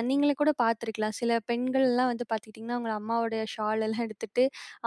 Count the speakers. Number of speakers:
one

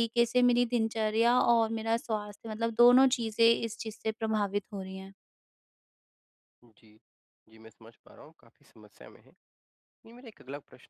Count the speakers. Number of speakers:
two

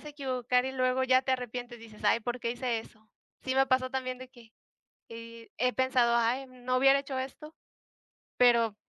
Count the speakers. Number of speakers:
one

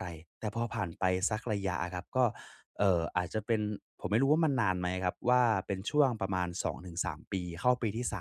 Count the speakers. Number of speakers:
one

